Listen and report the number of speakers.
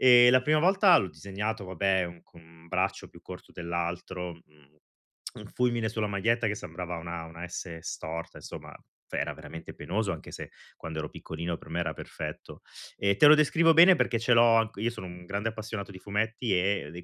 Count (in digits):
1